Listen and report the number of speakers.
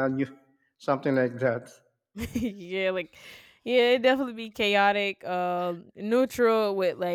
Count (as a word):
two